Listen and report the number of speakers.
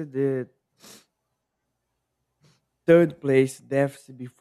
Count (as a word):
one